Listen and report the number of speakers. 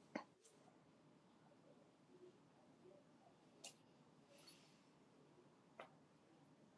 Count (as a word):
zero